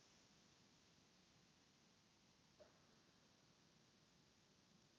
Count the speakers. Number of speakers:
0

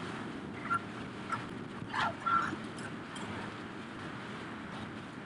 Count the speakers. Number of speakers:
0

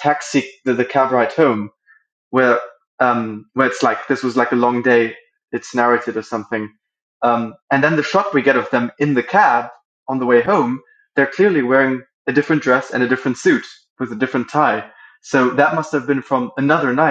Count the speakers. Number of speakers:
1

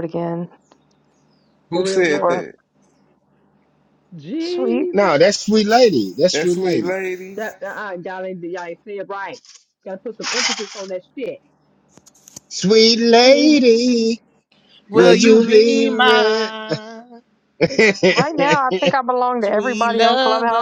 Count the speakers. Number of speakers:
5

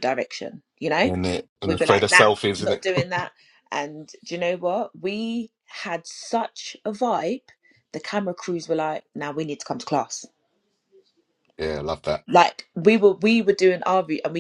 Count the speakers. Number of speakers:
2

